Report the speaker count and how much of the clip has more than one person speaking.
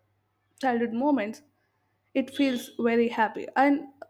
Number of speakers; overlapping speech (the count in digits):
1, no overlap